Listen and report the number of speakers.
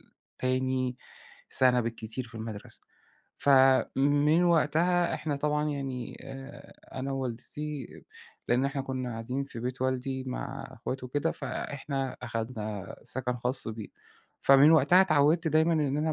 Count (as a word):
one